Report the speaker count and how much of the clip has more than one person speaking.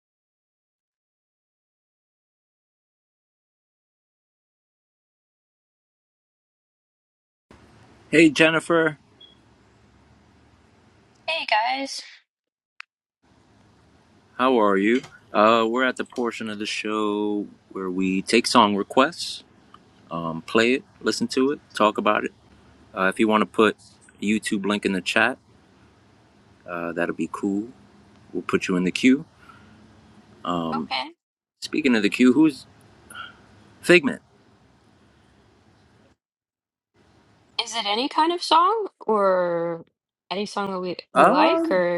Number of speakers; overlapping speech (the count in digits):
2, about 2%